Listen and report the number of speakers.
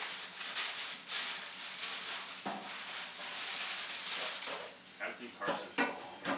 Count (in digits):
1